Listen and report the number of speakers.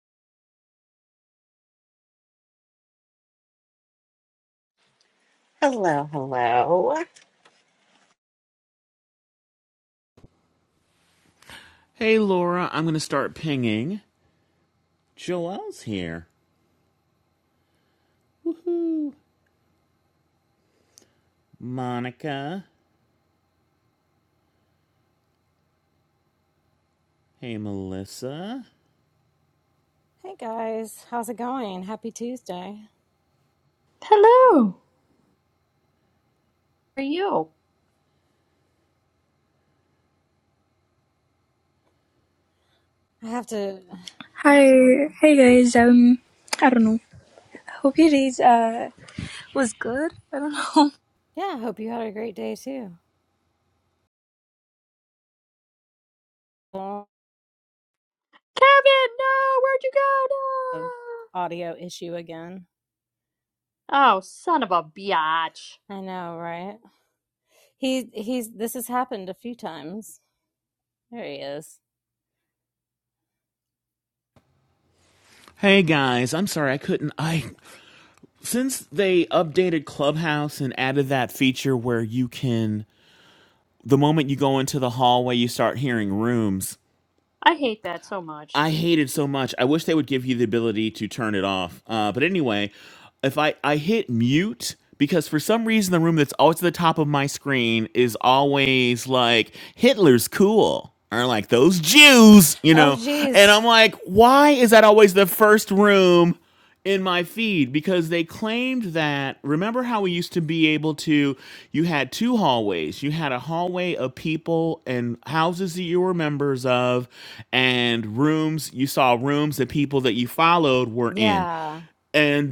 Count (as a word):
five